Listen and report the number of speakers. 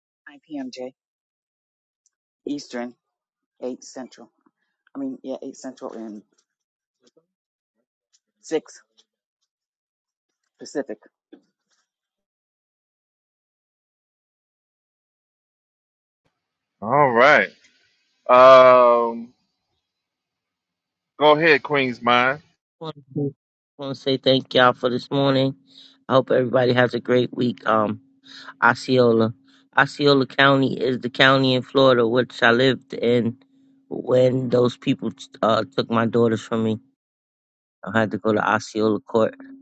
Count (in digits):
3